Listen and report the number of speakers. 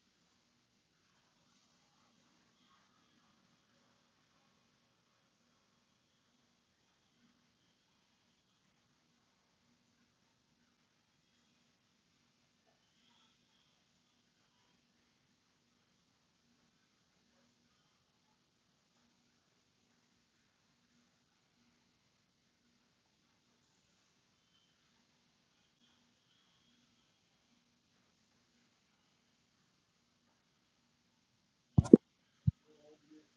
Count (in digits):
0